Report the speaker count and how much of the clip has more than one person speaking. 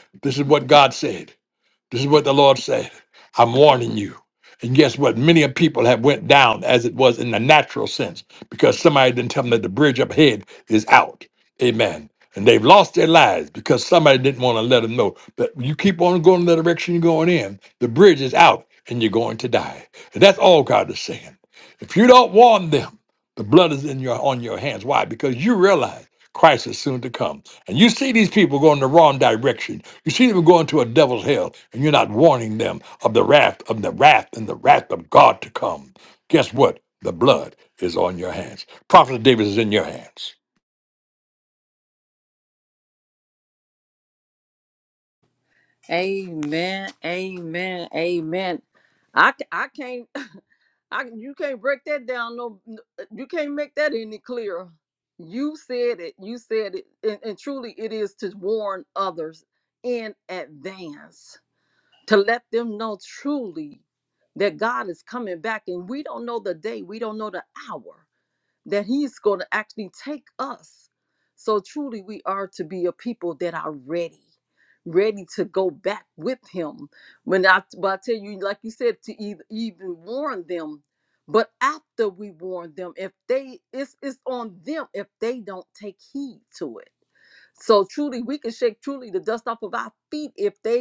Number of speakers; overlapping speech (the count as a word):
two, no overlap